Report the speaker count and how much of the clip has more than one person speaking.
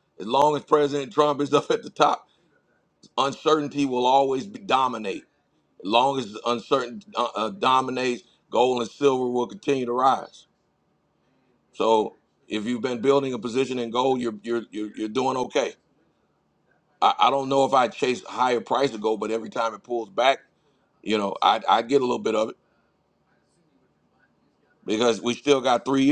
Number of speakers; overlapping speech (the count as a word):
one, no overlap